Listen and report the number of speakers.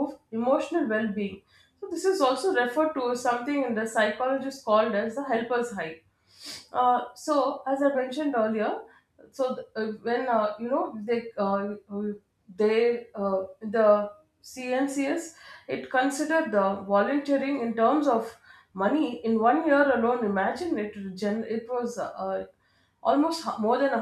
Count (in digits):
1